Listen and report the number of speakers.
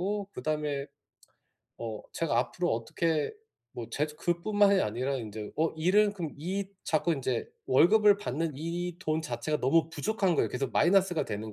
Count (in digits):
1